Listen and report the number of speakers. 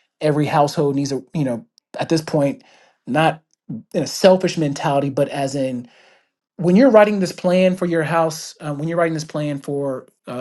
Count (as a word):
one